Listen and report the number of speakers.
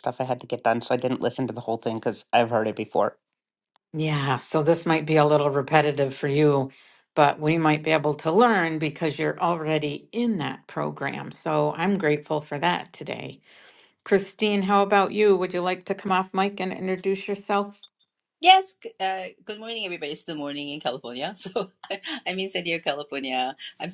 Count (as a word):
three